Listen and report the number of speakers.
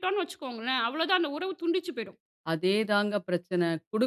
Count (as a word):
two